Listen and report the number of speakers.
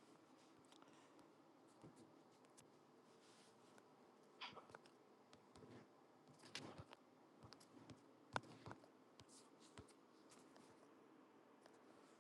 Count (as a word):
zero